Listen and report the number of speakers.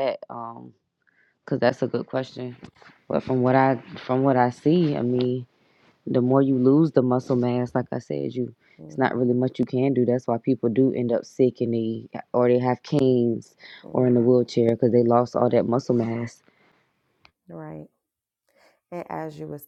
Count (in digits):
2